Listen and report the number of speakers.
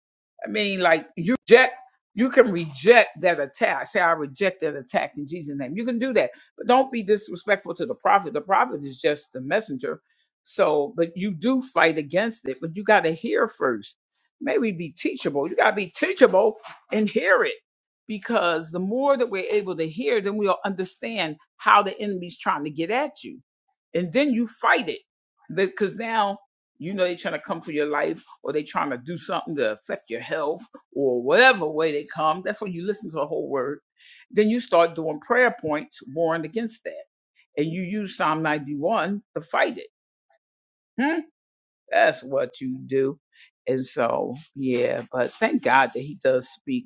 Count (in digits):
1